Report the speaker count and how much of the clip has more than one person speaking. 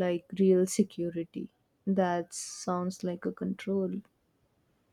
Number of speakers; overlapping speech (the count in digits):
1, no overlap